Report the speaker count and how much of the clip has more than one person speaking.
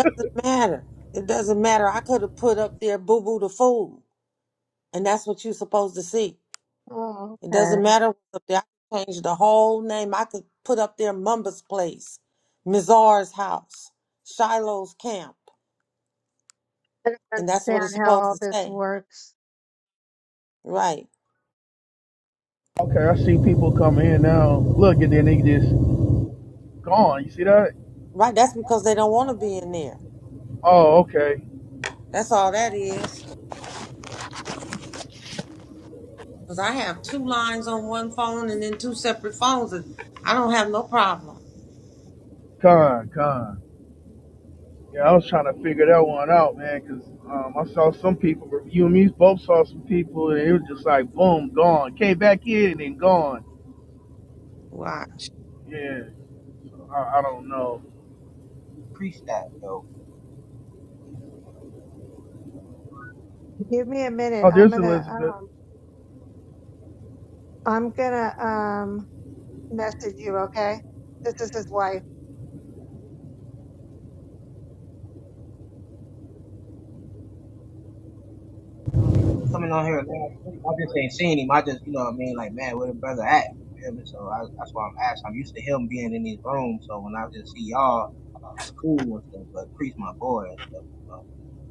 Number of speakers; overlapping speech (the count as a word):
four, about 3%